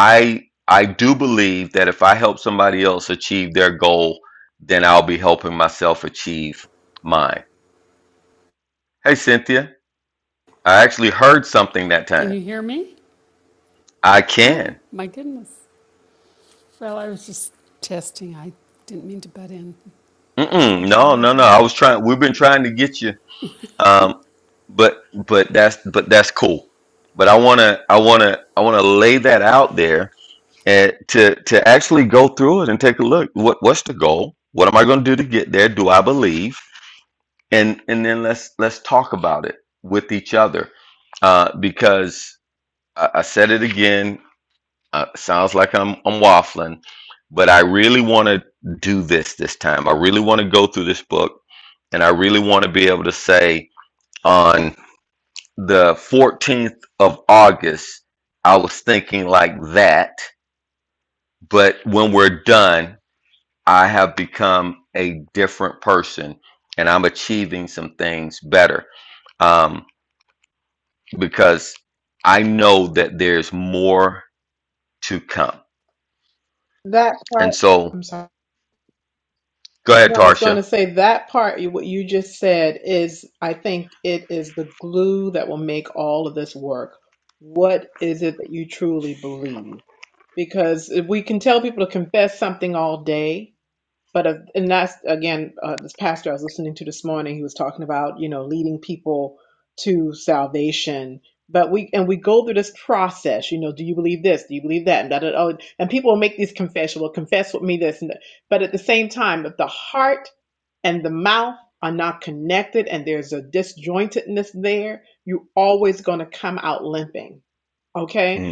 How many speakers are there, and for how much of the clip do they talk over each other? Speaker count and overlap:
3, about 2%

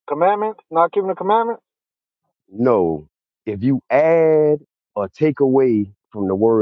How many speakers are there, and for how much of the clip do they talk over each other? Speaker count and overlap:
2, no overlap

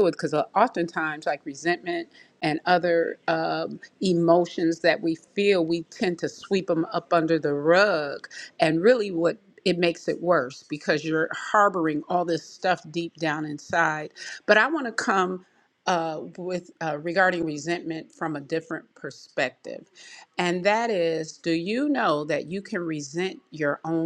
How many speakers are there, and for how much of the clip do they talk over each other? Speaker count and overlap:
1, no overlap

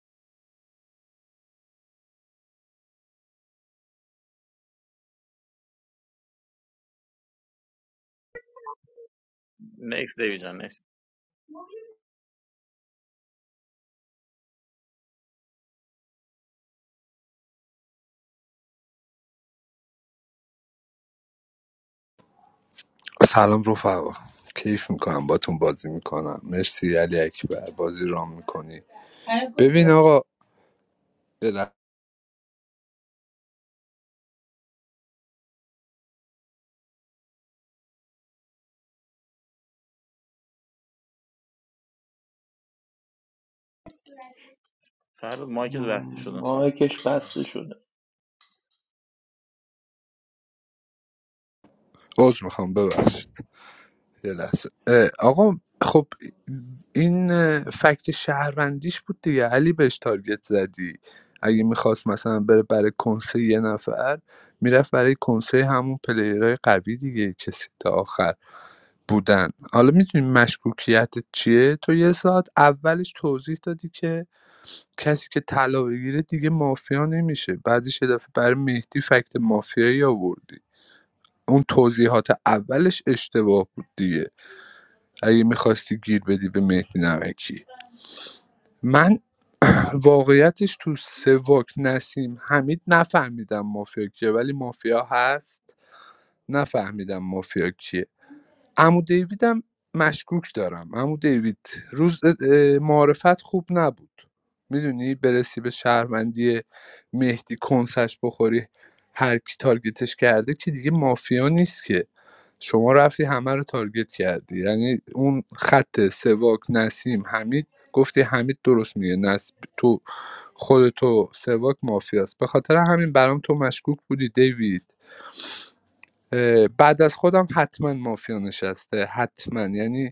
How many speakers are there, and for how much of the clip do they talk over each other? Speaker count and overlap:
3, about 1%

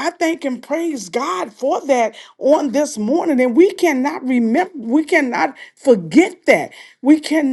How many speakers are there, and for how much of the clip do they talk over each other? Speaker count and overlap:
1, no overlap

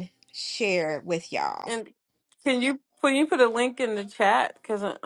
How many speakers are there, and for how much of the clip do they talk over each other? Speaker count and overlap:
2, no overlap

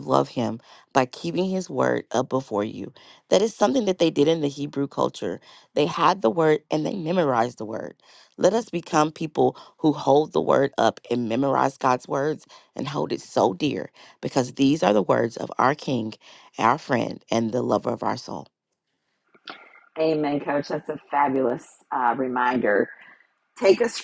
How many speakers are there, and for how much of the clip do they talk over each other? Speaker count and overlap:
2, no overlap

